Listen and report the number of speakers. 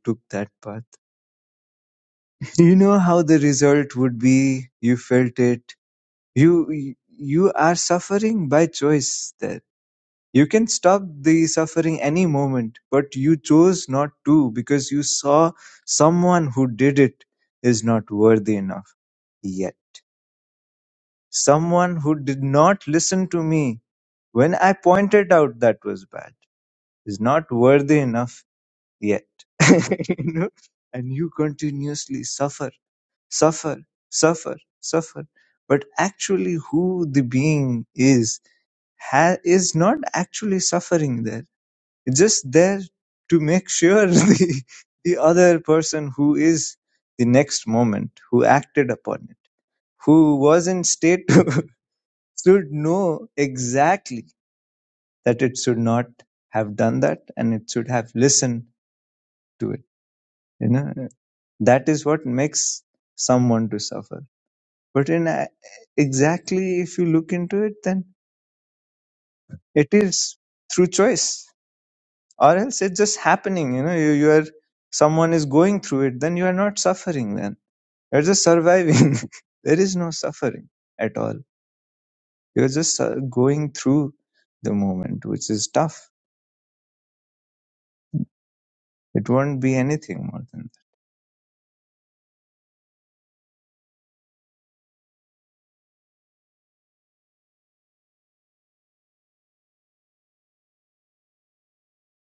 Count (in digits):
1